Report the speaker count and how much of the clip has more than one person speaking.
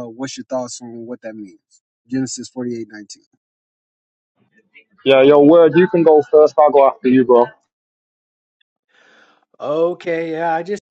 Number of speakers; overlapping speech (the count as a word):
three, no overlap